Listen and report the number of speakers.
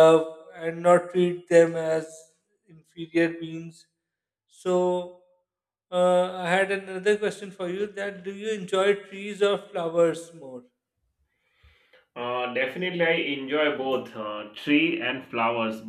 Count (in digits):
2